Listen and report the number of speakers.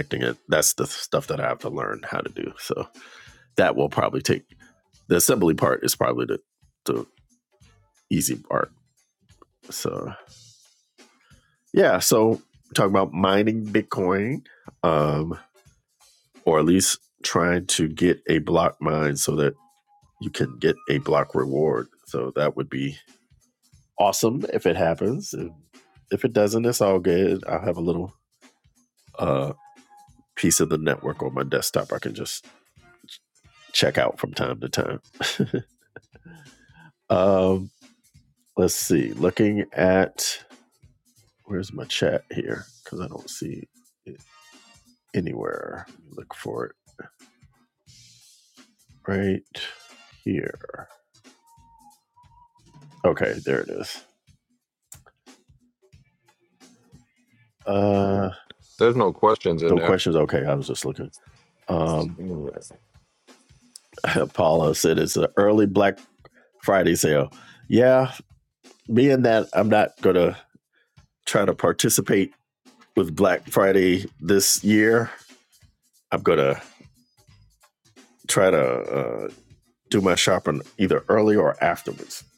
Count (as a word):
two